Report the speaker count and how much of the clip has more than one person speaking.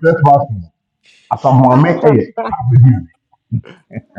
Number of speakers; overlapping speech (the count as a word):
one, no overlap